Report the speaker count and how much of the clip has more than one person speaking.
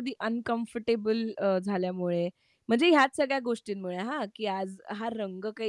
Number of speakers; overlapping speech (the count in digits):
1, no overlap